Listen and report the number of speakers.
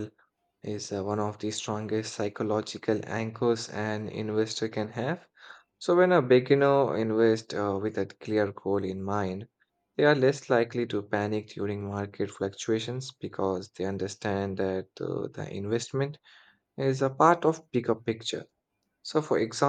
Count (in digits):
1